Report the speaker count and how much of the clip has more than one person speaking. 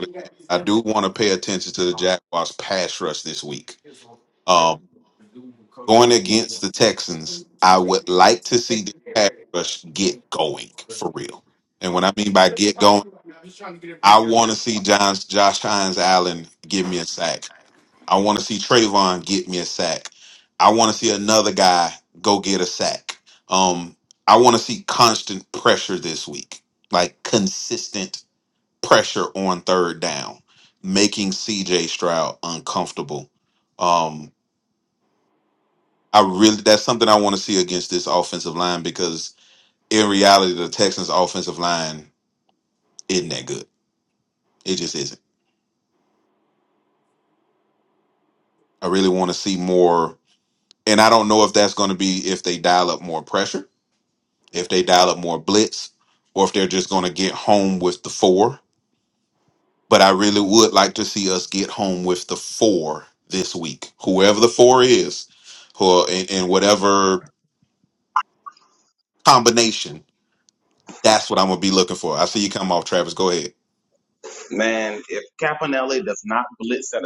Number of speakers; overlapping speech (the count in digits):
2, no overlap